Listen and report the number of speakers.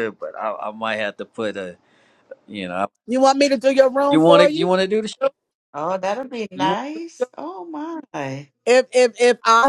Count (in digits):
3